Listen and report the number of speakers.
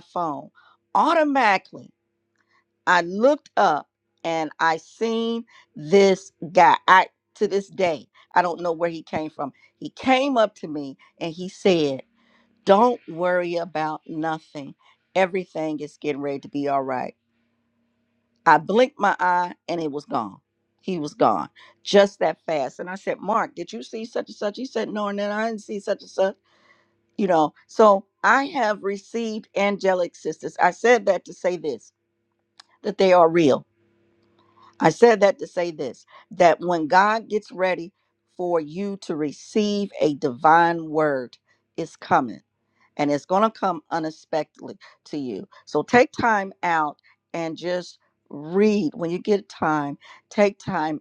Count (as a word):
one